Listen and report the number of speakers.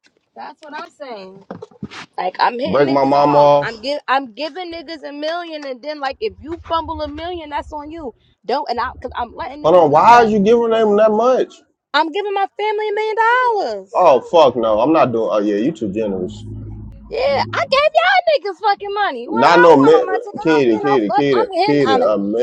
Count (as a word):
two